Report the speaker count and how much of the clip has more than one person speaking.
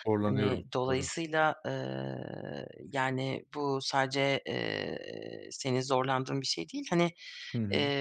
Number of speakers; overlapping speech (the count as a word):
two, about 12%